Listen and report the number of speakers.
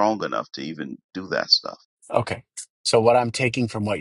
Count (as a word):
two